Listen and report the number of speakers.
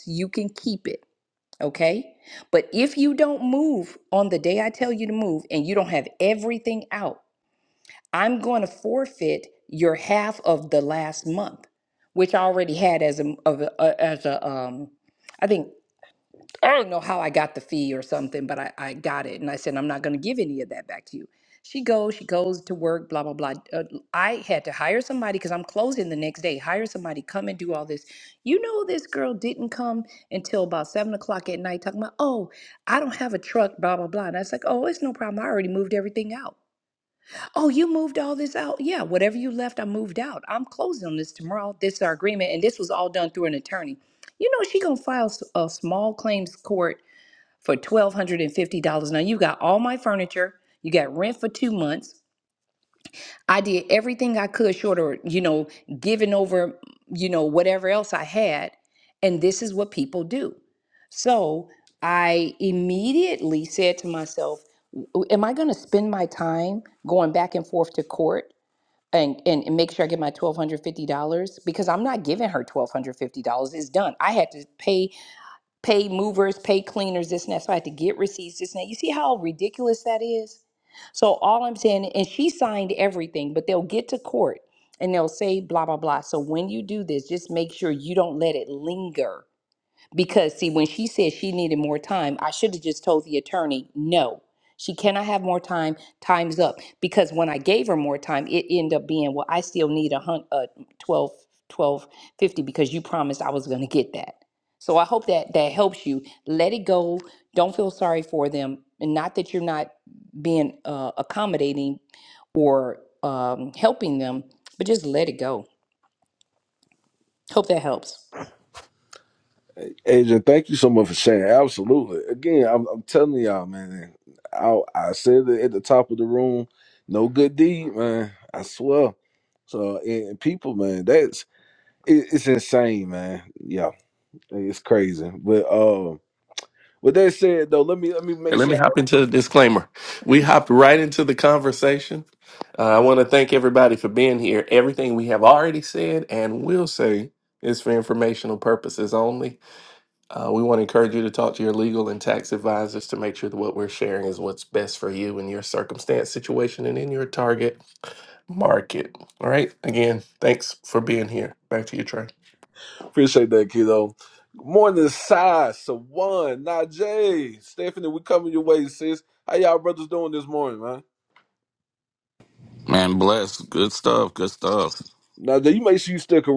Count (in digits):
4